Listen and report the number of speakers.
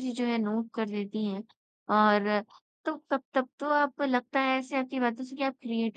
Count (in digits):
1